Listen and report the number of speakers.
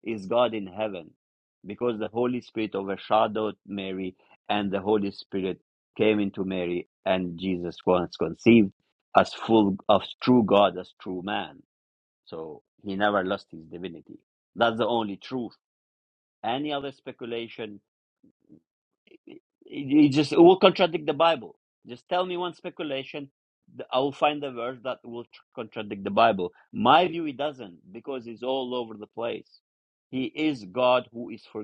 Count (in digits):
1